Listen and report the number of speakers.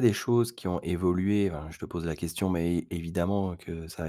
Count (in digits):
1